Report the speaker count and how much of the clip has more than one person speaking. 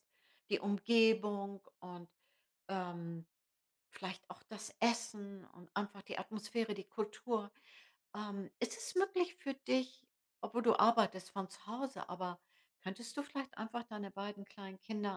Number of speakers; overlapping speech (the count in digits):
1, no overlap